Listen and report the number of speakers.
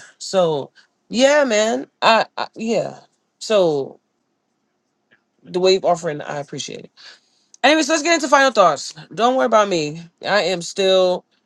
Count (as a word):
one